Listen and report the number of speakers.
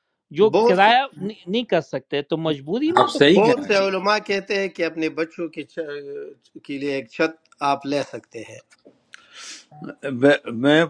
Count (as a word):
three